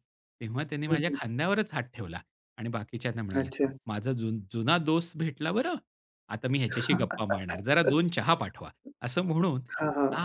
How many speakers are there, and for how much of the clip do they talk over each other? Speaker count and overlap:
2, about 5%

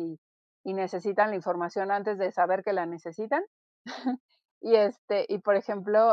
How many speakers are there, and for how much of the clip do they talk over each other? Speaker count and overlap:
1, no overlap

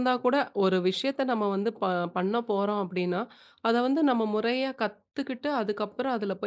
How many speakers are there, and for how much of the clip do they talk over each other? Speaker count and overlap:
1, no overlap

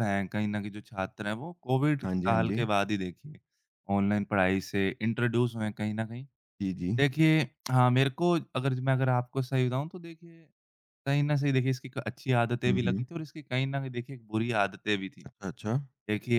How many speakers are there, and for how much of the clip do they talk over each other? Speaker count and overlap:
2, about 6%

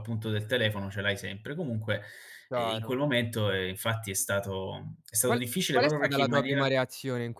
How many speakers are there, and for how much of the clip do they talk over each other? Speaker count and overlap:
2, about 19%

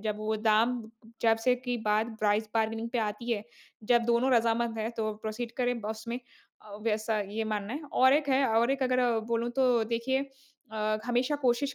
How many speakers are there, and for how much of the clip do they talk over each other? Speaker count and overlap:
1, no overlap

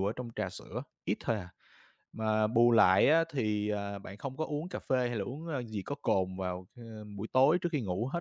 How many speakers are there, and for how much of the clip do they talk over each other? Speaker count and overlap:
1, no overlap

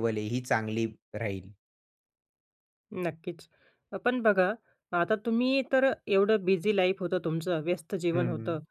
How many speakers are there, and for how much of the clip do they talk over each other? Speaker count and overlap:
2, about 5%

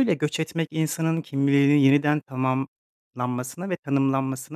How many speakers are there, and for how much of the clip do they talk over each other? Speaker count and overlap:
1, no overlap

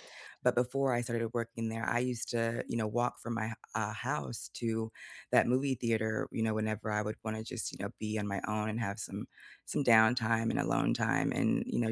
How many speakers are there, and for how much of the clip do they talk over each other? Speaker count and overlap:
1, no overlap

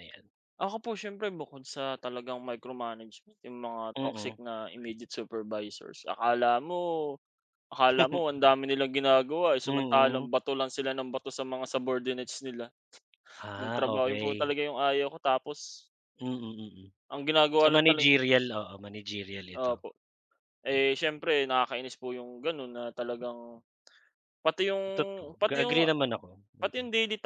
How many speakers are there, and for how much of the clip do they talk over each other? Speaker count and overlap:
2, about 11%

